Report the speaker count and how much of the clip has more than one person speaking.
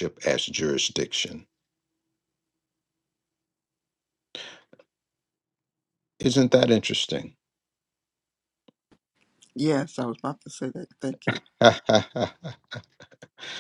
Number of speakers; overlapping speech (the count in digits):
2, no overlap